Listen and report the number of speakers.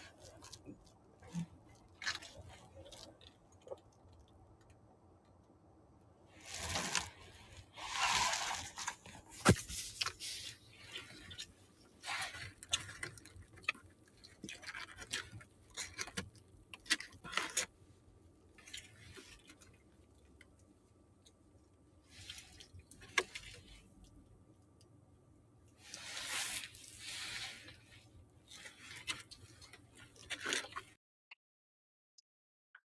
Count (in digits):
0